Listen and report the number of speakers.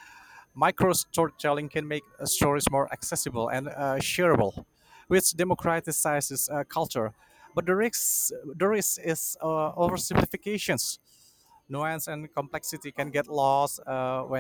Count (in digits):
1